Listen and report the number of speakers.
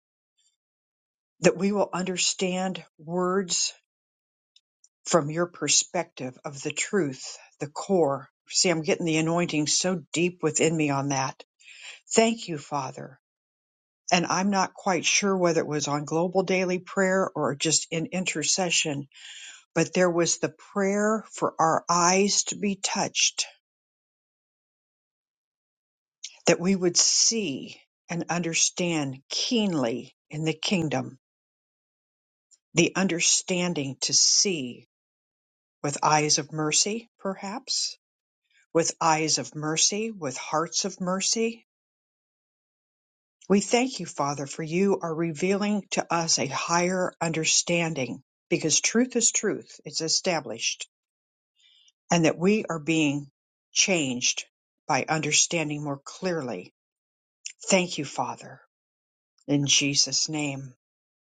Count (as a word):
one